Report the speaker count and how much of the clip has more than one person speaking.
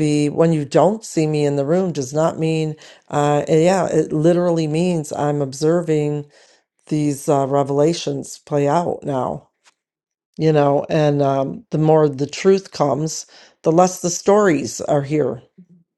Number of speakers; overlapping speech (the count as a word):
one, no overlap